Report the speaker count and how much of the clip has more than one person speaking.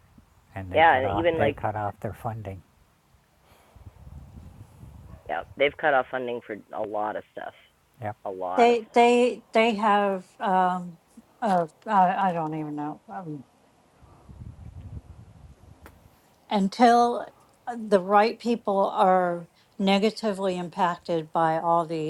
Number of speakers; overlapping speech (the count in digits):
3, about 6%